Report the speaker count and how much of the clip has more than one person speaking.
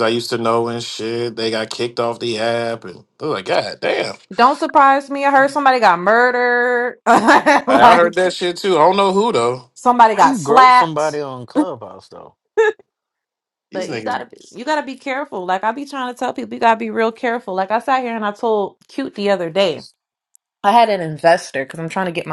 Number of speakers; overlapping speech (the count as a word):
three, about 7%